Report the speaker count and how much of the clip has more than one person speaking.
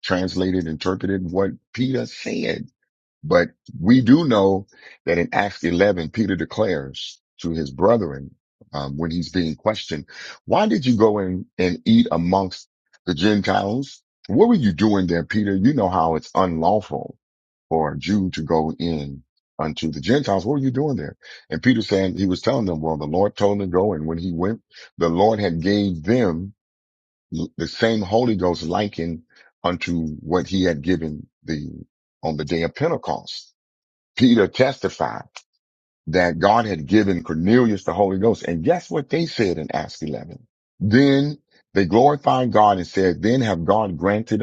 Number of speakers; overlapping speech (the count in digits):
1, no overlap